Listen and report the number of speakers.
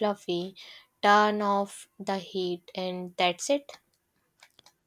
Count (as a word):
one